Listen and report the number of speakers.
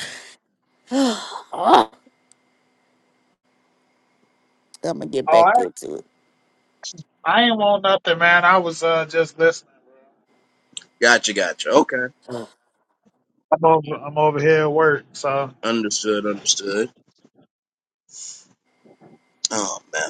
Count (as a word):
three